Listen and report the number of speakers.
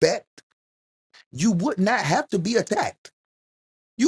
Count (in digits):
1